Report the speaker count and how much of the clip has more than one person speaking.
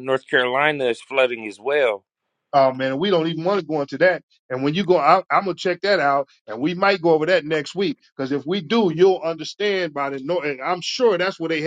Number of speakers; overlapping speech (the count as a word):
two, no overlap